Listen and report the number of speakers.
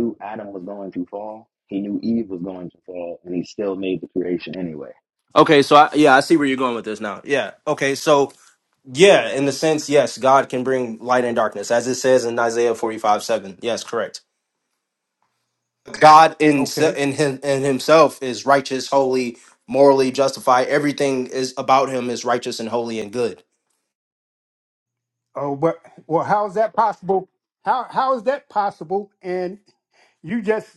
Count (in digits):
3